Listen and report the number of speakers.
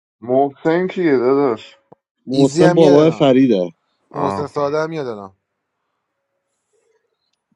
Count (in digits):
3